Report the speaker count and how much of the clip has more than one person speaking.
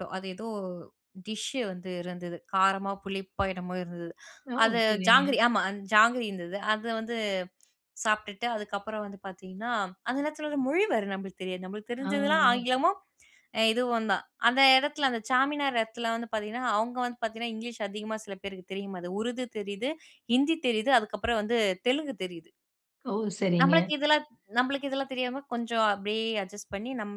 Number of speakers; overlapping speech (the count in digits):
2, about 4%